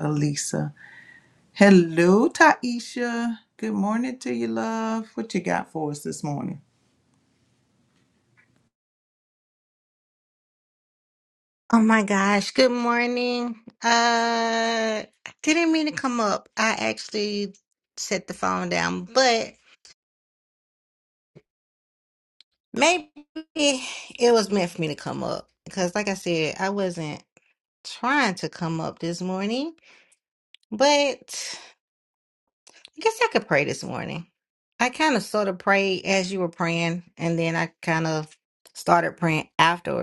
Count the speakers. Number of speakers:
2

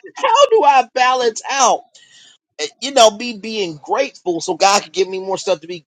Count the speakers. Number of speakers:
1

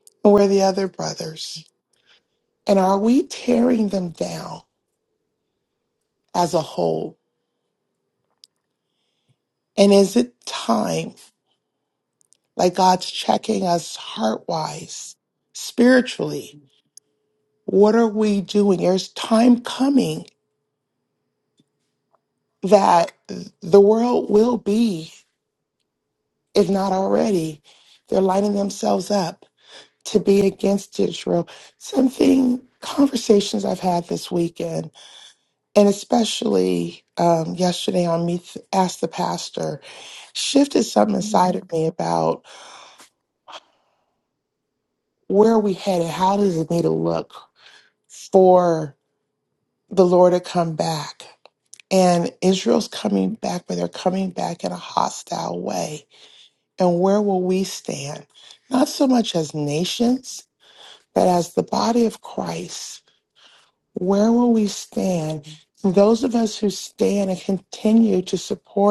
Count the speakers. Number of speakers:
1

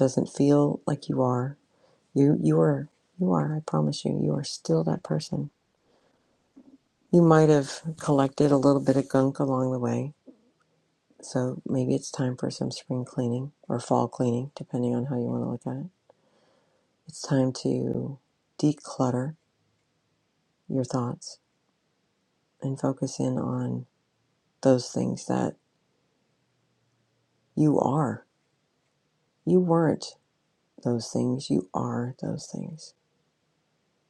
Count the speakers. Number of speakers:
1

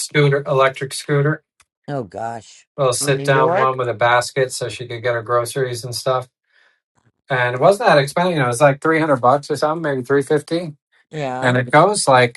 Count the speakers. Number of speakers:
2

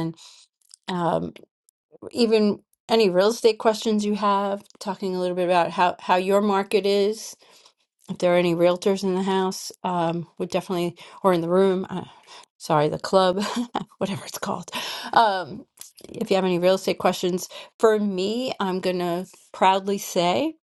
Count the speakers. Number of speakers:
1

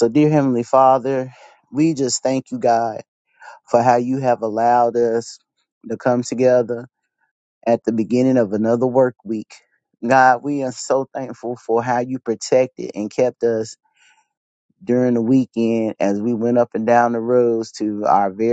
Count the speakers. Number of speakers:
1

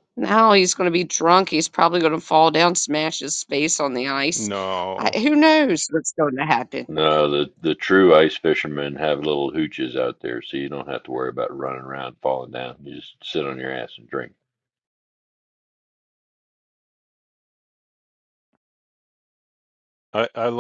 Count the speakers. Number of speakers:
3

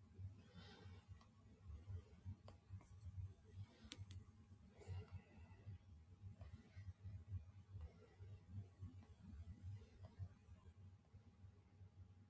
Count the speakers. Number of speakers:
0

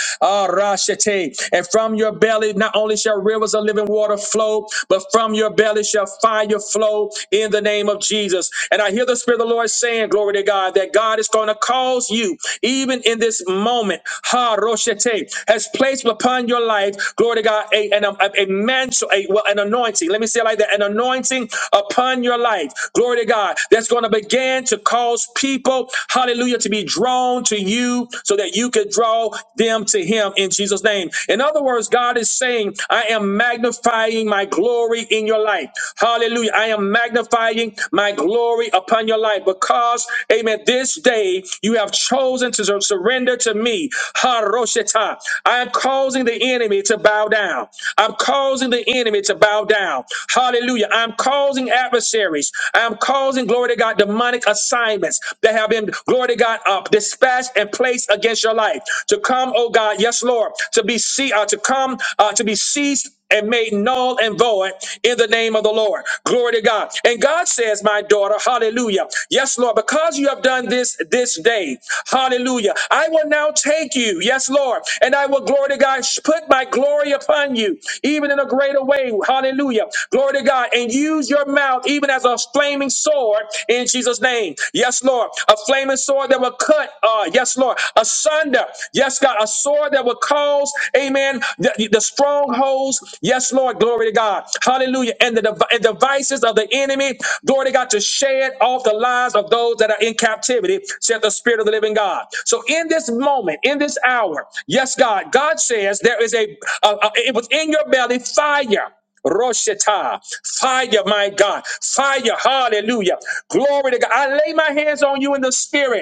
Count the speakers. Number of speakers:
1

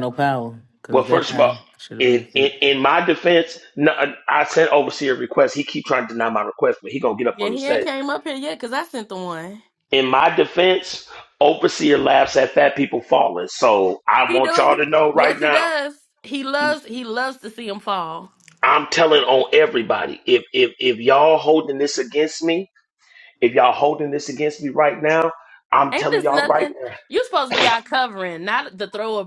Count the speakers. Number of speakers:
3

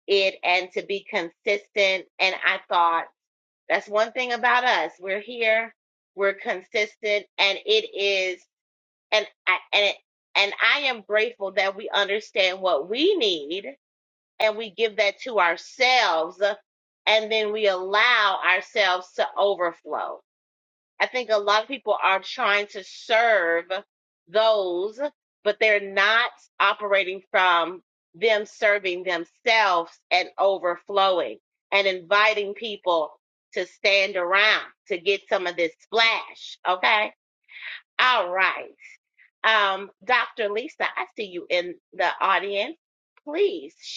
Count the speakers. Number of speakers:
1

